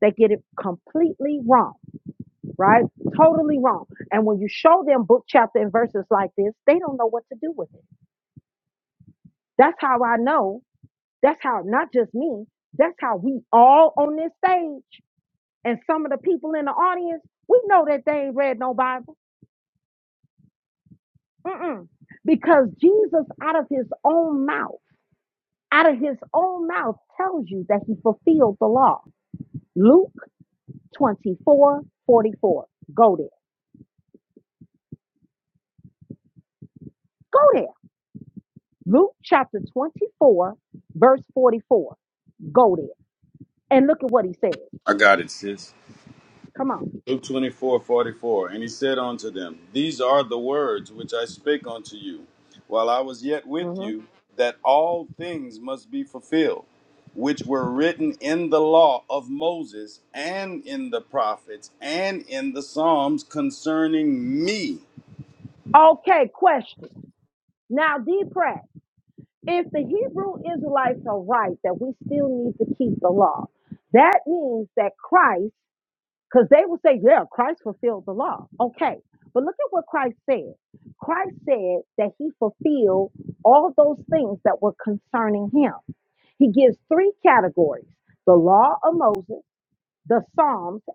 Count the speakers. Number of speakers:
two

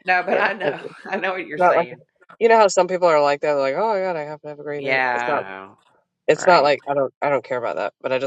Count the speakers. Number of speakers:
two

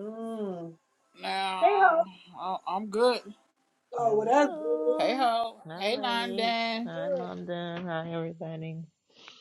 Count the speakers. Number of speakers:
three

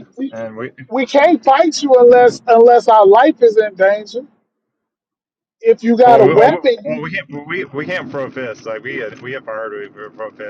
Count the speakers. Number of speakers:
two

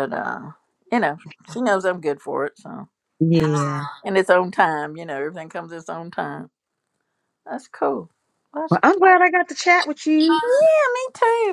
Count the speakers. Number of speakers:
two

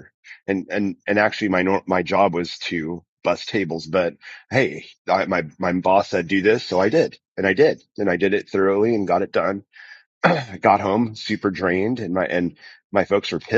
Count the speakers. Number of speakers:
one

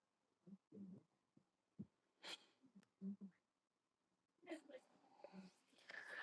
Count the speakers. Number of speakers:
zero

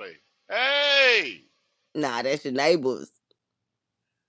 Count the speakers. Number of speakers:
two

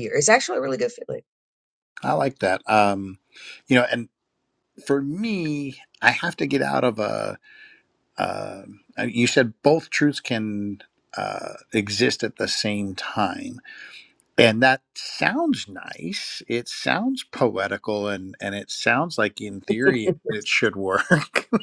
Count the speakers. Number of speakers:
two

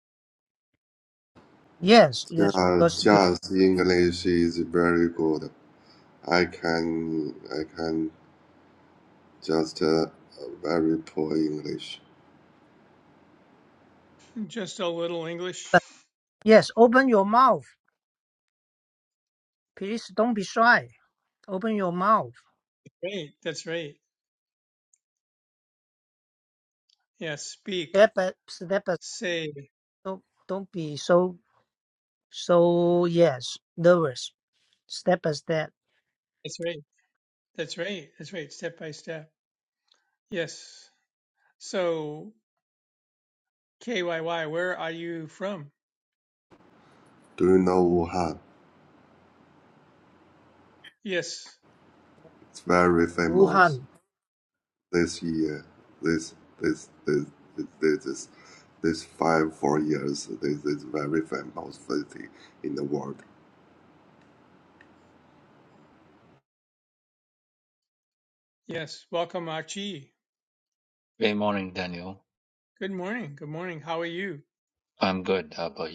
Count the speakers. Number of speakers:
four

